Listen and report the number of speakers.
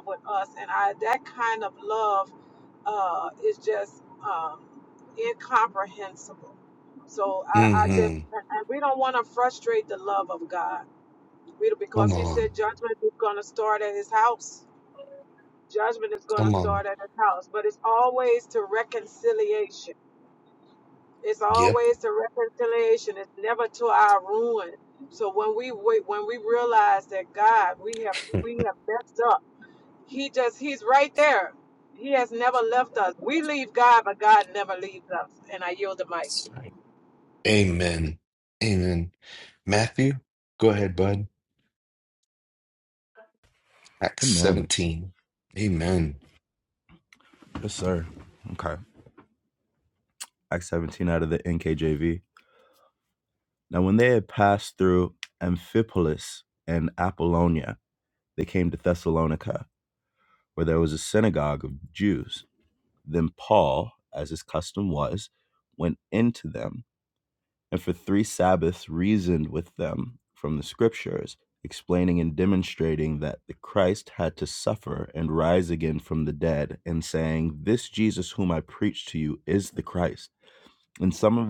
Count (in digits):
3